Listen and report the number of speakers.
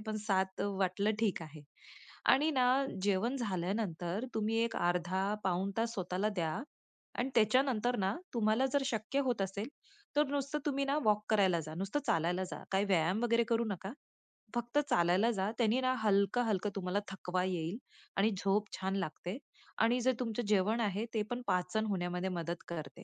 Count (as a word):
one